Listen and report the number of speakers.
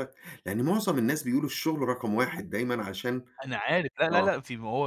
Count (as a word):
two